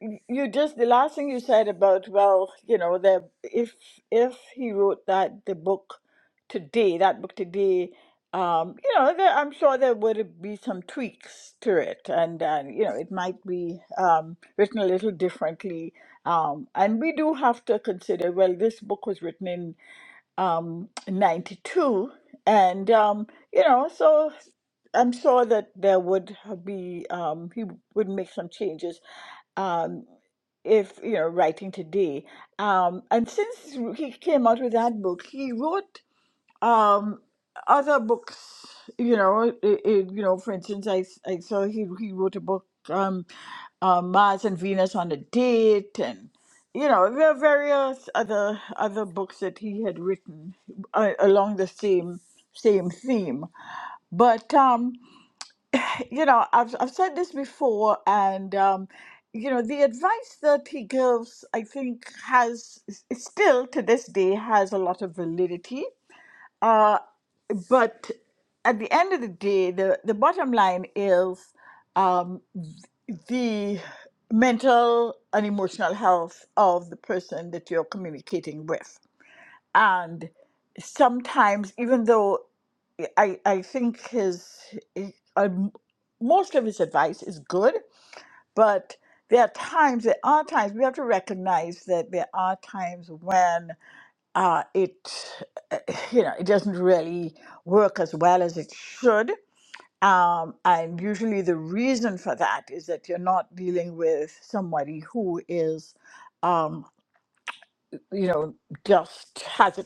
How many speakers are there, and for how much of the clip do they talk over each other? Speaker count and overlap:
1, no overlap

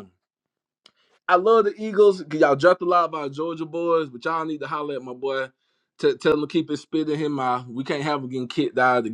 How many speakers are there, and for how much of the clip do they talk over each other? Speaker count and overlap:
1, no overlap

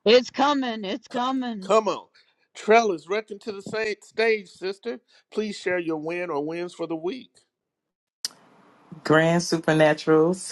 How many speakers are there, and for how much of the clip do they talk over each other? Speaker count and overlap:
3, under 1%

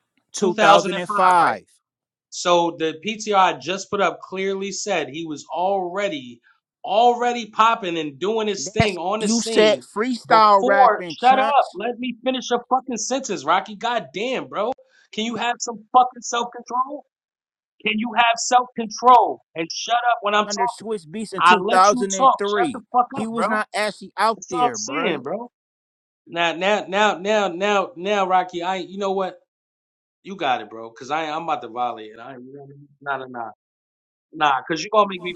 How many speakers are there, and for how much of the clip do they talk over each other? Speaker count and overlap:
2, about 16%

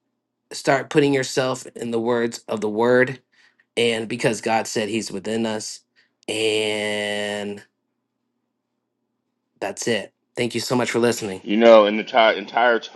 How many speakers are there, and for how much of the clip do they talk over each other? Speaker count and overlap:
2, no overlap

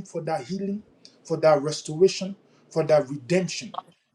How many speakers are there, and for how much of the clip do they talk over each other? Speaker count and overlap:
1, no overlap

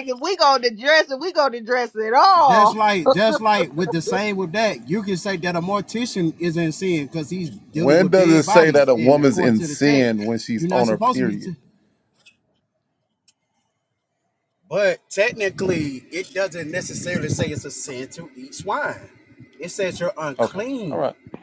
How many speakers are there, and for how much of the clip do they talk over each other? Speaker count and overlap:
3, about 19%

